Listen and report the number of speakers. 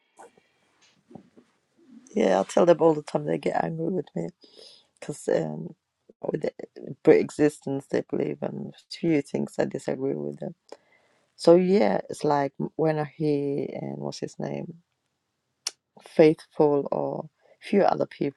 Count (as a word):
one